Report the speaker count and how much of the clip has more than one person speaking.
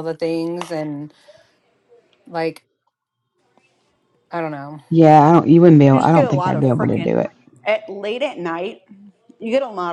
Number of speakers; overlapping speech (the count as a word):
three, about 14%